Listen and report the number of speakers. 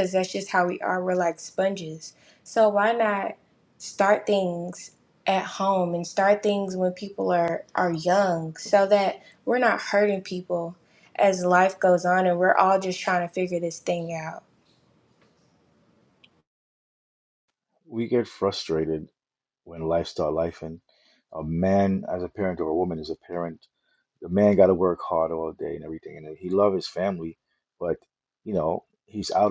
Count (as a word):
two